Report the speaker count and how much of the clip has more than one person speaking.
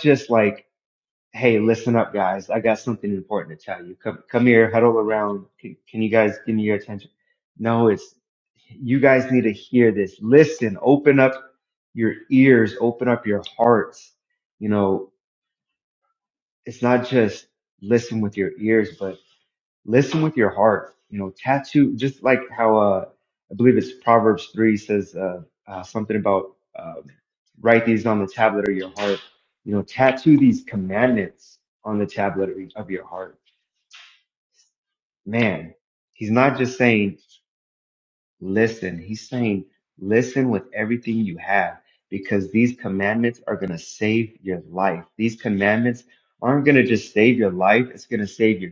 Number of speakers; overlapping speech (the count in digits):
1, no overlap